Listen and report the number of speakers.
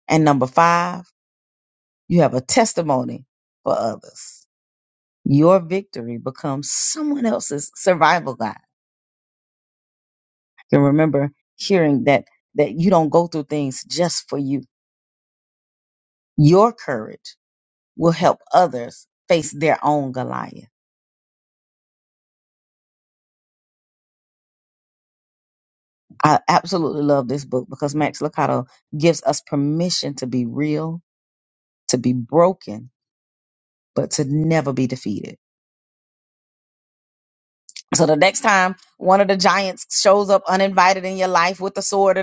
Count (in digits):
1